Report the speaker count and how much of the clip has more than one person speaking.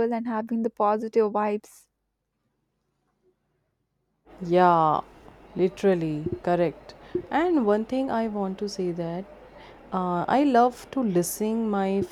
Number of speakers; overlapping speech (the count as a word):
two, no overlap